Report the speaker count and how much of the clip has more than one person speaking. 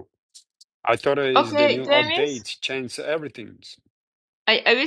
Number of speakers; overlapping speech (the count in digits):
2, about 20%